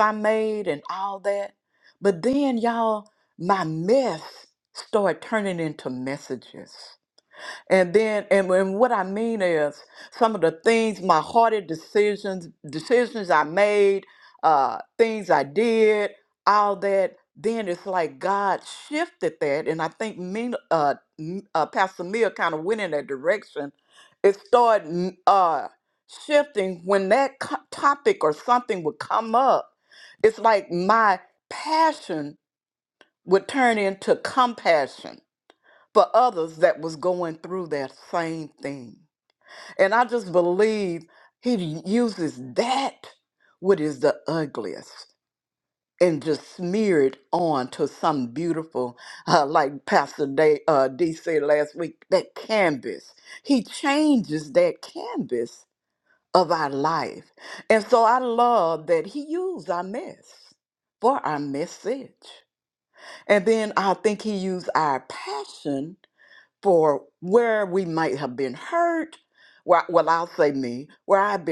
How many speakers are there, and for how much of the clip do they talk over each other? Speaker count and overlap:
1, no overlap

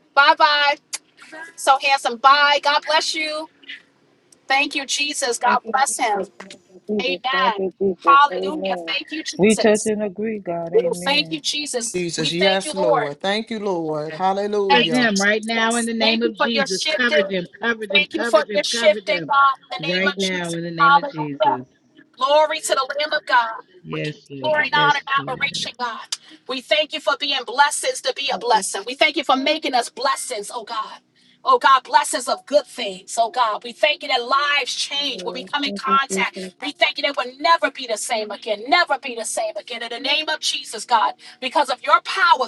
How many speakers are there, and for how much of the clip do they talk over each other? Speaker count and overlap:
4, about 29%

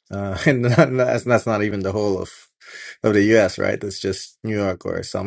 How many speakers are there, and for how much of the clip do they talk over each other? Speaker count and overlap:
1, no overlap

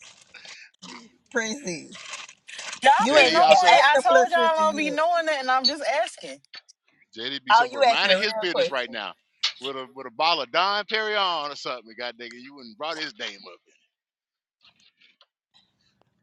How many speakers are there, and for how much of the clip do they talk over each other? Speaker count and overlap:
3, about 22%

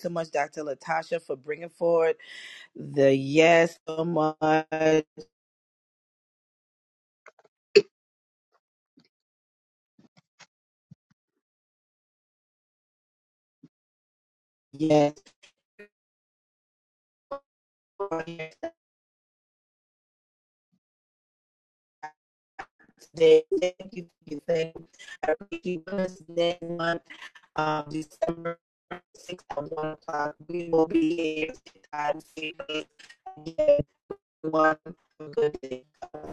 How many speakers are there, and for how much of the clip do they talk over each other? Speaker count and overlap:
1, no overlap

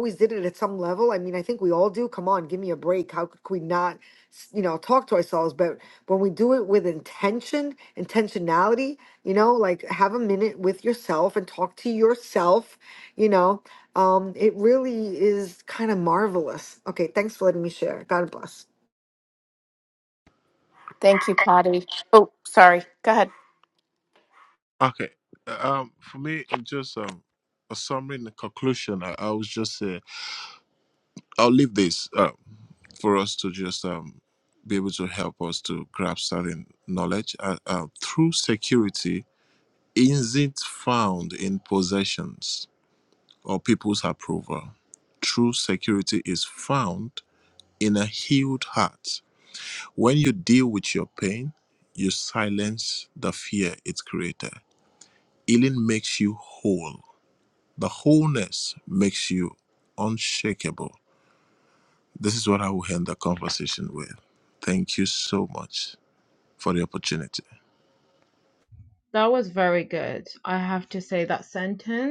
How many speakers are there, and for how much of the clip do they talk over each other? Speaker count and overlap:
4, no overlap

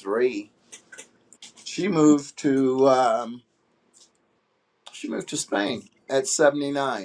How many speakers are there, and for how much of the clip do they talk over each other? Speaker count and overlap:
1, no overlap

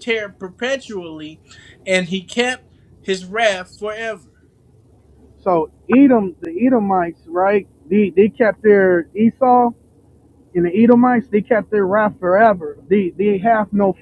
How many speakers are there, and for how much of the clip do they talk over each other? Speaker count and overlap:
2, no overlap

